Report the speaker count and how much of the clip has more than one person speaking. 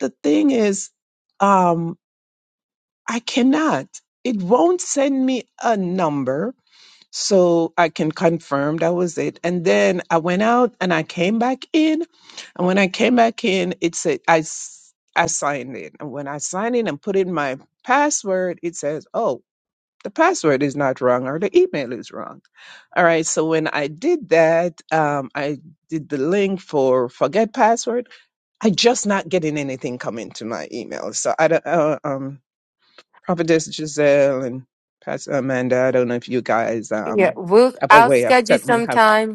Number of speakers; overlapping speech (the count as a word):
two, about 4%